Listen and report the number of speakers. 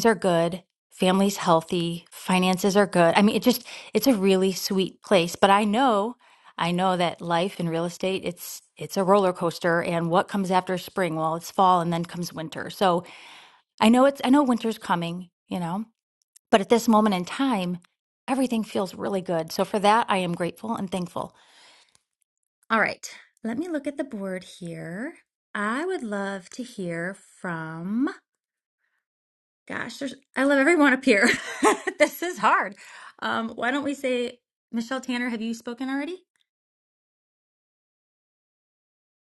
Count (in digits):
1